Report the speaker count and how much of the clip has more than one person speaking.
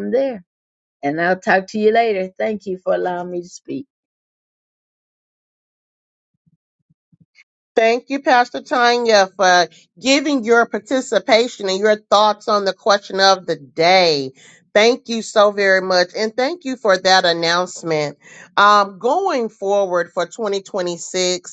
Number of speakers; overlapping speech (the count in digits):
2, no overlap